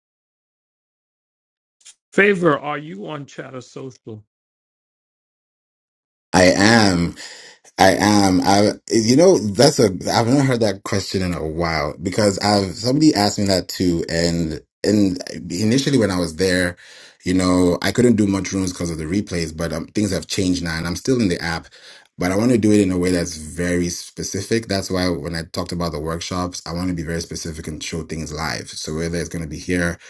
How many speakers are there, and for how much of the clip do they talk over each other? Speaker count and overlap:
2, no overlap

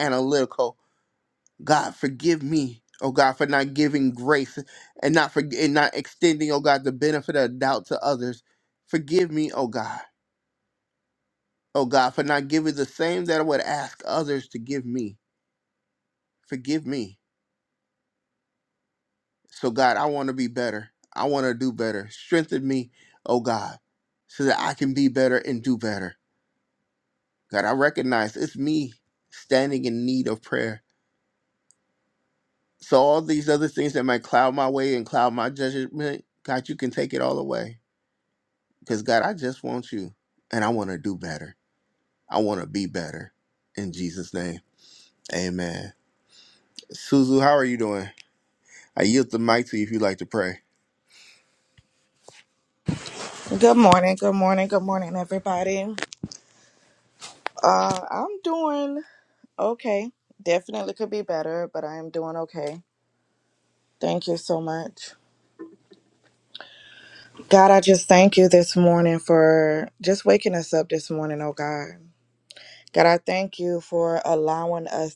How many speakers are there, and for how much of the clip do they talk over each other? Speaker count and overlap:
2, no overlap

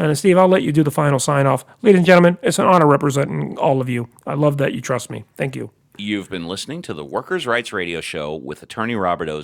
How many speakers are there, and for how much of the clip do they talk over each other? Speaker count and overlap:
2, no overlap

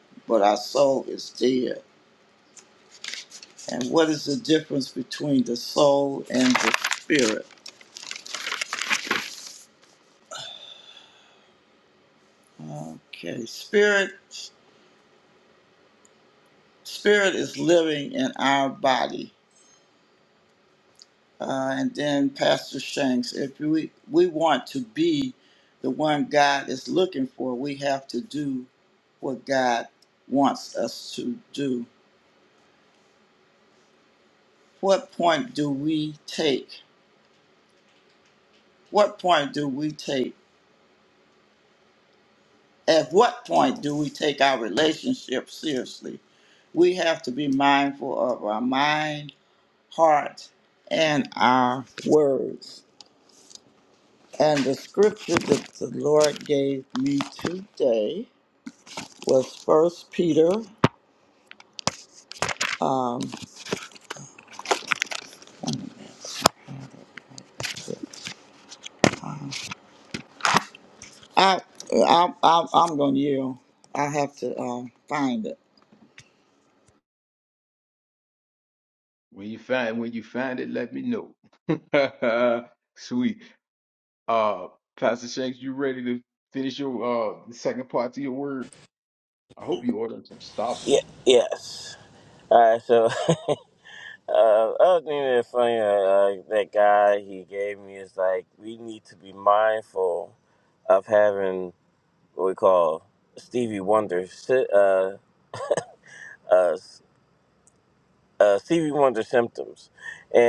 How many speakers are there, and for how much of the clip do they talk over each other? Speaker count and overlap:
3, under 1%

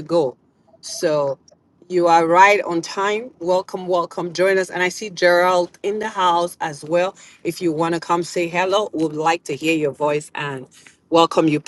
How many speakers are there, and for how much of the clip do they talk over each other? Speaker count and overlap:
1, no overlap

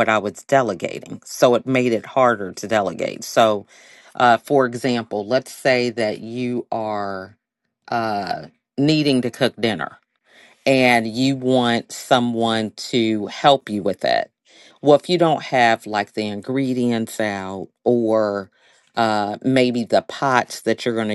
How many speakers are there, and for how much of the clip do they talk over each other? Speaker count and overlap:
1, no overlap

